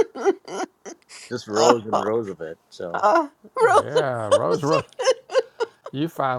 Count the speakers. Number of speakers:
three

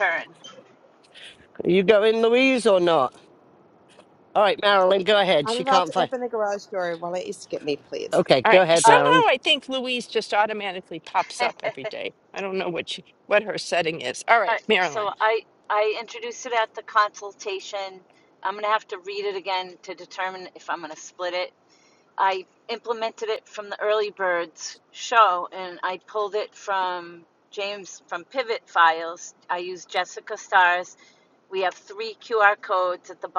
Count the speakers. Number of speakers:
four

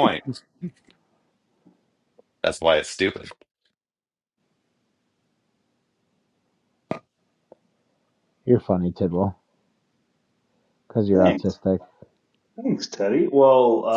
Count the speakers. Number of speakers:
three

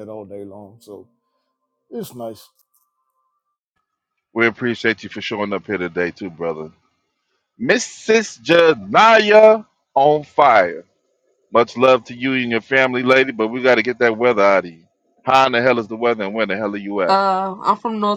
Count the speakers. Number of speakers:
three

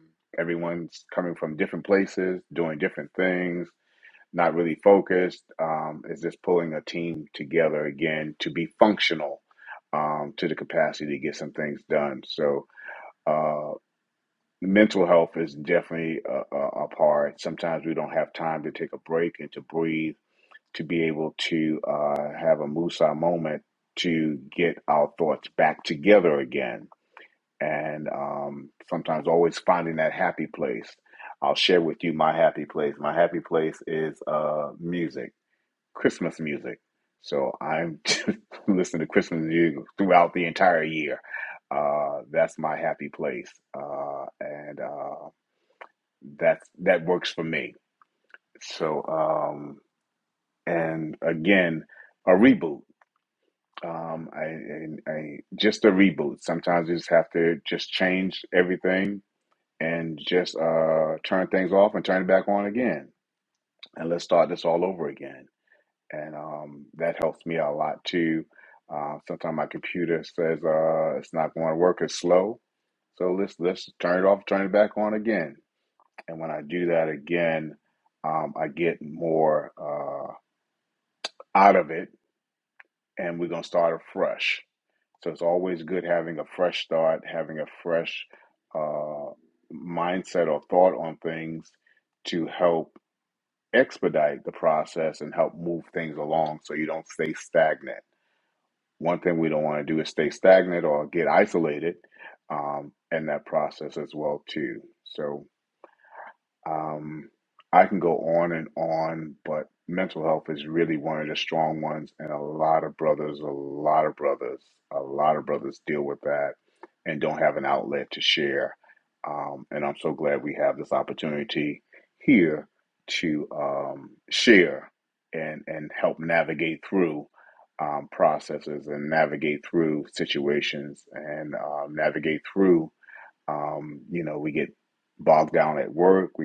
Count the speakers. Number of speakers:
one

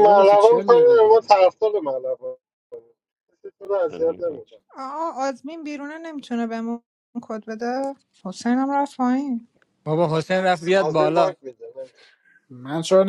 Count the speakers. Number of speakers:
four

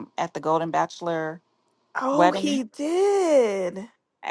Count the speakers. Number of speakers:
two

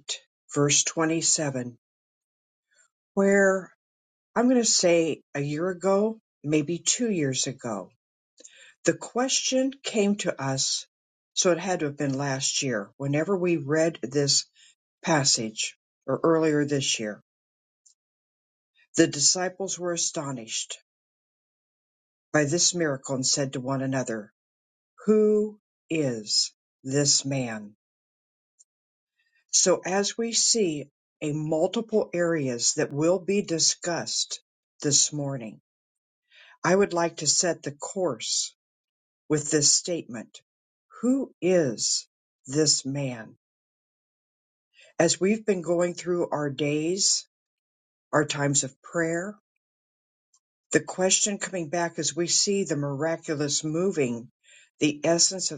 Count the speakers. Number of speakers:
one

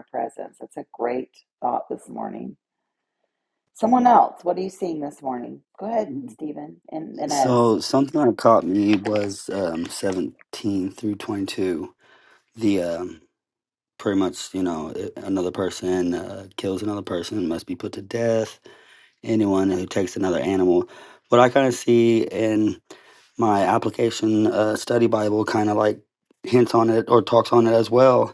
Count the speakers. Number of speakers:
two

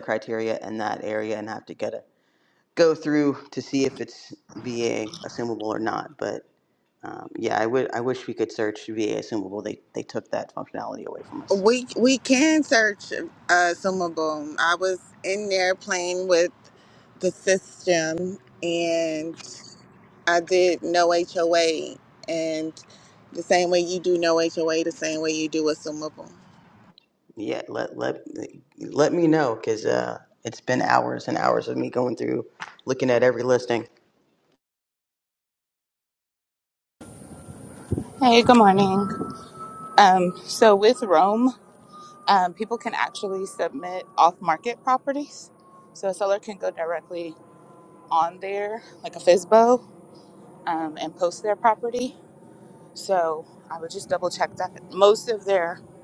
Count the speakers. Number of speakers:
three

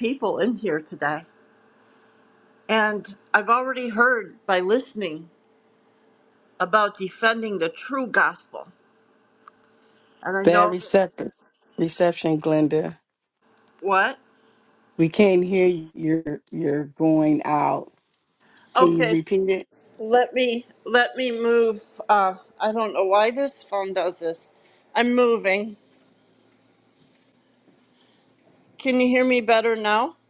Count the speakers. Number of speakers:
two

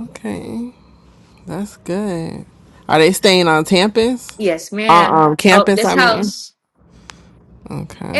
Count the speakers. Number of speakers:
two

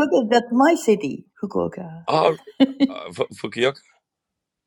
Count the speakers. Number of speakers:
two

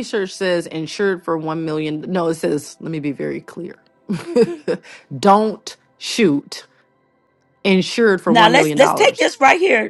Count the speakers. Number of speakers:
two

